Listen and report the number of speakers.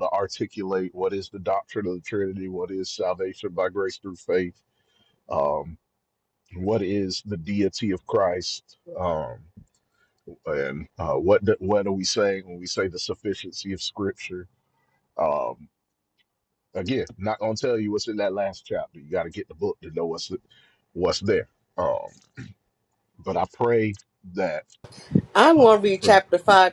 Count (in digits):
2